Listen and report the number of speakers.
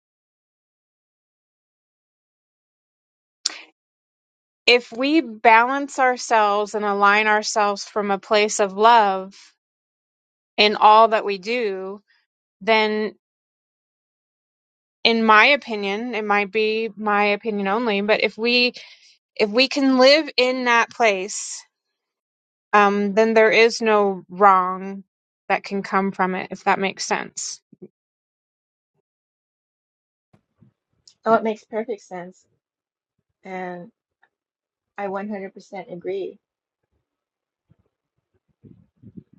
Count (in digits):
2